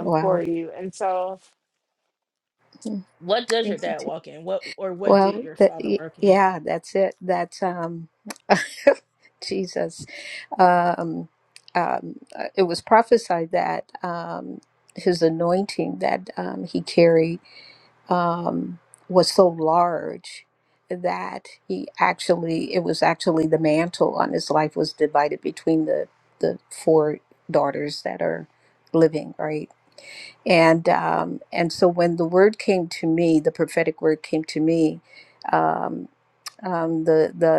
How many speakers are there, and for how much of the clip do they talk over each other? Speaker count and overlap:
two, about 6%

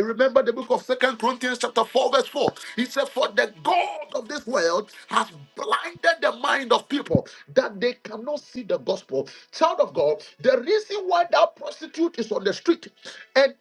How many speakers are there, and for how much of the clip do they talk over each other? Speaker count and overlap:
one, no overlap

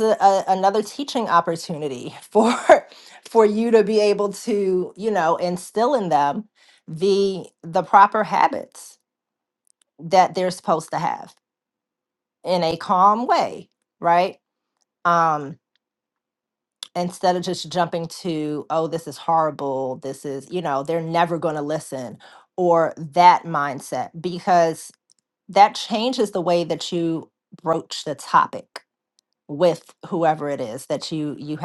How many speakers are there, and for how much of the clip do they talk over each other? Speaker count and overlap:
one, no overlap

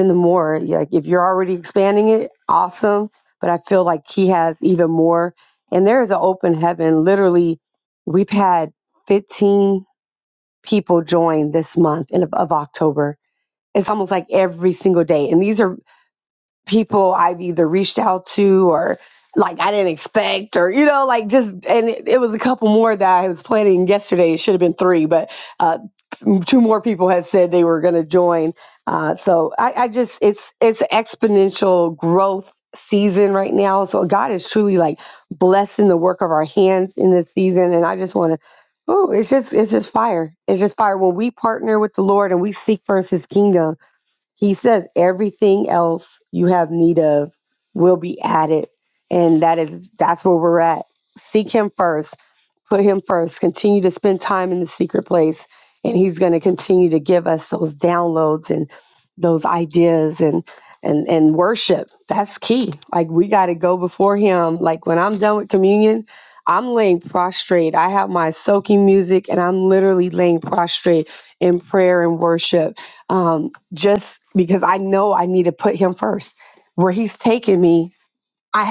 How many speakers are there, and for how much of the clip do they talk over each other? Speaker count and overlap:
one, no overlap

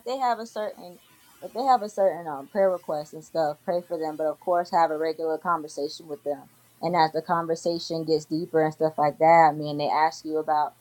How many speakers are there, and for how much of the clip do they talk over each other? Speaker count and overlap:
one, no overlap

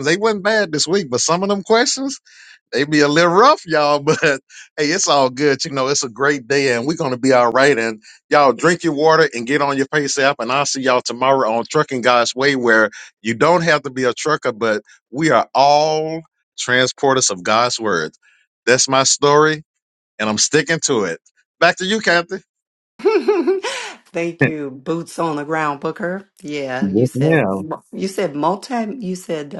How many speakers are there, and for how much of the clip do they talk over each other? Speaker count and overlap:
two, about 2%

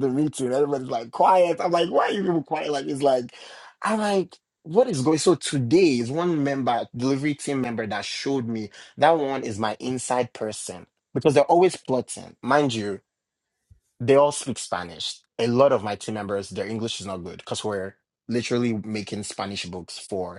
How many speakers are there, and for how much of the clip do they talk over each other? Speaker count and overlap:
one, no overlap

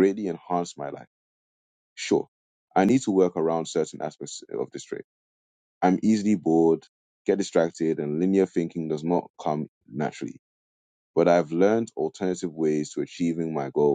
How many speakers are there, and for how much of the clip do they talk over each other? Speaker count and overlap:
one, no overlap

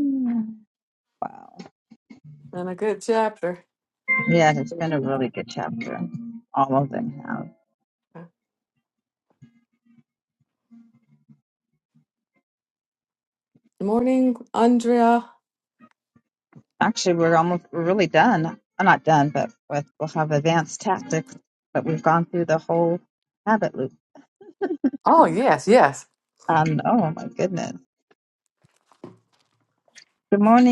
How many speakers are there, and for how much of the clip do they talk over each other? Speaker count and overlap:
two, no overlap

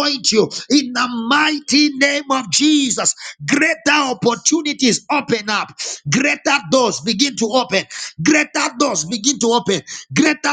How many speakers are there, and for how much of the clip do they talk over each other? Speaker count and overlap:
one, no overlap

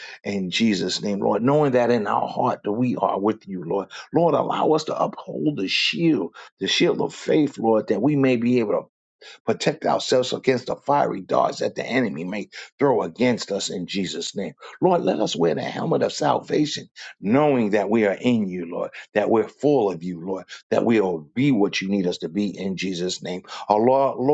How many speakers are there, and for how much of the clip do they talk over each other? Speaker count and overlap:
one, no overlap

